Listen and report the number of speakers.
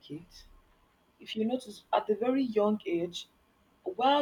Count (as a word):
one